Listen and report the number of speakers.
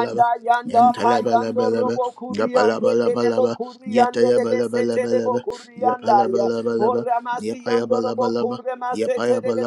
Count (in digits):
2